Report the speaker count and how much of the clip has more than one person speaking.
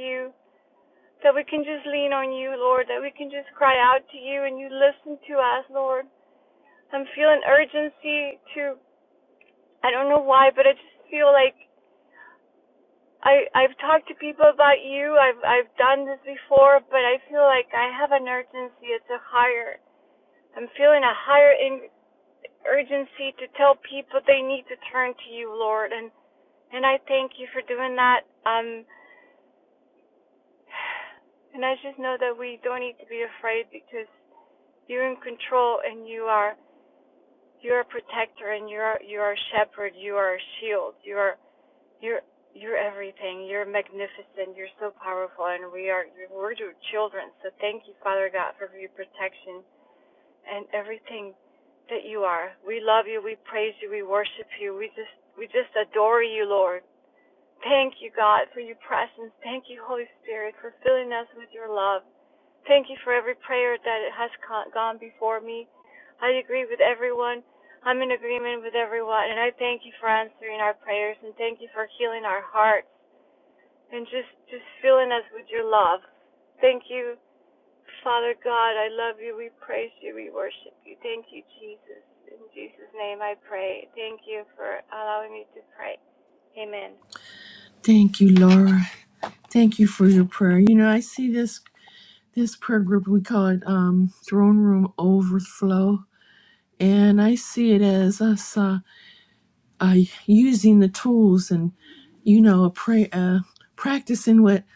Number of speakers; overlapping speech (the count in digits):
2, no overlap